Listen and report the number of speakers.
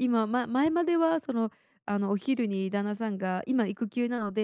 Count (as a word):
one